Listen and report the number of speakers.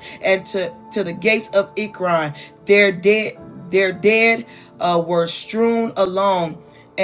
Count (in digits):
1